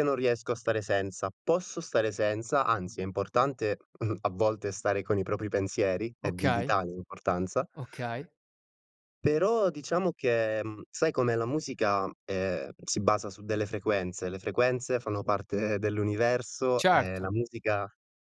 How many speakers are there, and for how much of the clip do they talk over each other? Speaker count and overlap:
2, about 5%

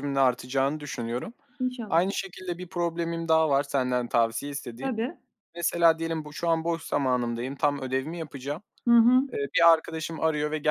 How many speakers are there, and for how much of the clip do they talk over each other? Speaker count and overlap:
2, about 1%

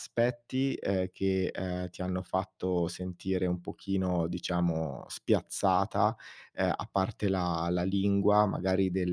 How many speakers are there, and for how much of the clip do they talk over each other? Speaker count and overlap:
1, no overlap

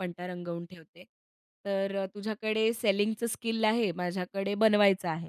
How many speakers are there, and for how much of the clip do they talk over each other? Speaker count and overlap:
1, no overlap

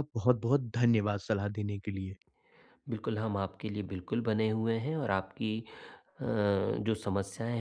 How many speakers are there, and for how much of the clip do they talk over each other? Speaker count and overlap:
2, no overlap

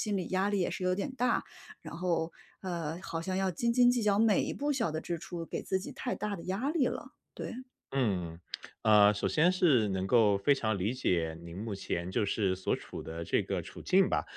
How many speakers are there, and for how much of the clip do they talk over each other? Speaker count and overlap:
2, no overlap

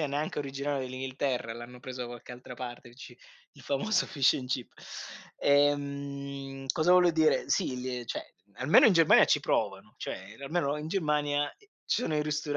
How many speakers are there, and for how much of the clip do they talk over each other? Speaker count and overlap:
1, no overlap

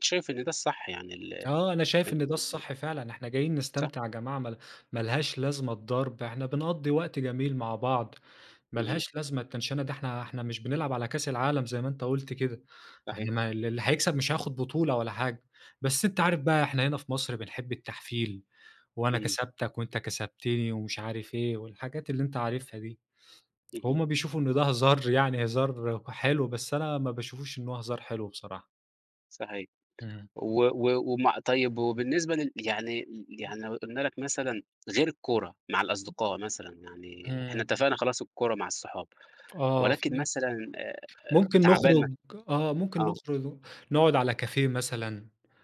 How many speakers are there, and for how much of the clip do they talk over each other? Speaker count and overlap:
2, about 6%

